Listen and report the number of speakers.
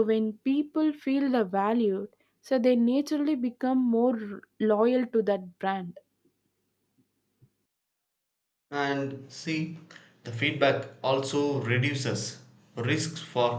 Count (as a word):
two